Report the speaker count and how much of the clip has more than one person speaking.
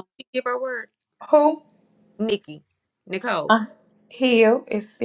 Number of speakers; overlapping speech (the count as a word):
two, about 1%